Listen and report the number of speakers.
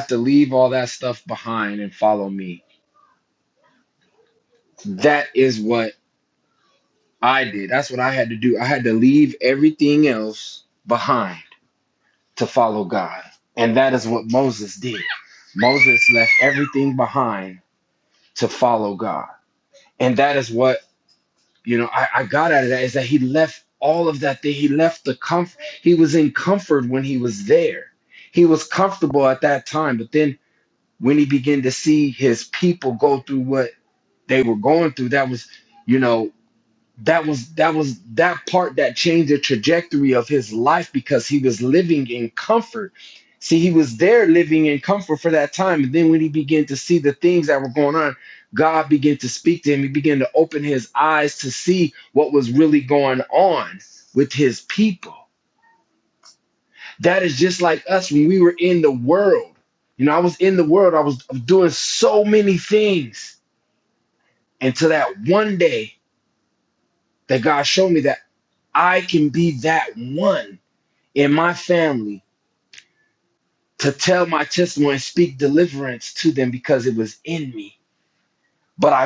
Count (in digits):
1